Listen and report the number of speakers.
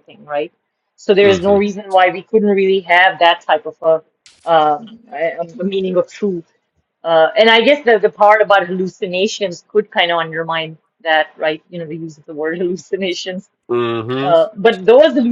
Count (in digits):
2